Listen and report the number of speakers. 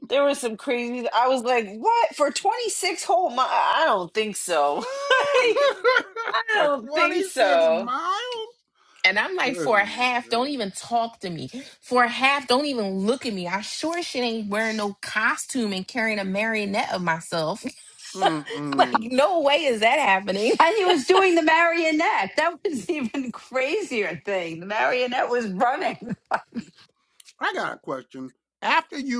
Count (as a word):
four